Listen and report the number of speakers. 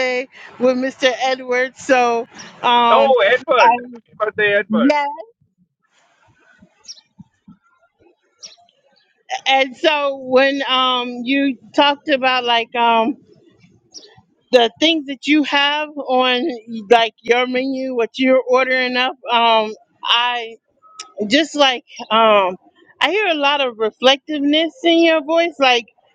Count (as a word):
two